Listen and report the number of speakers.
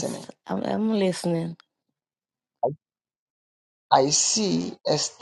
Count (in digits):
2